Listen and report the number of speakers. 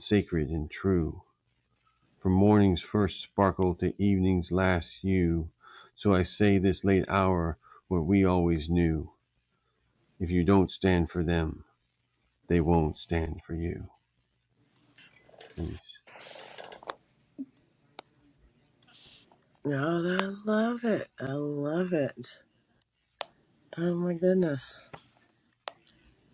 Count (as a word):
two